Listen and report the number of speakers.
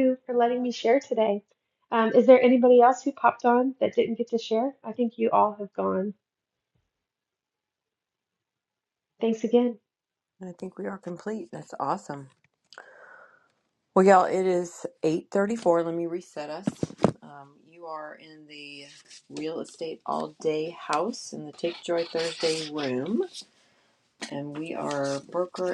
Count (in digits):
2